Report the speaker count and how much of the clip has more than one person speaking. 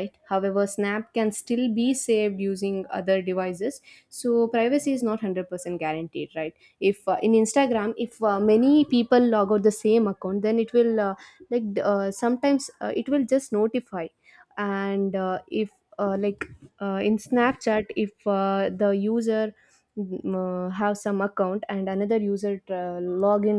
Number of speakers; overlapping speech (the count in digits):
1, no overlap